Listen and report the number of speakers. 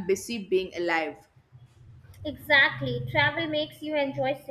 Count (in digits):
2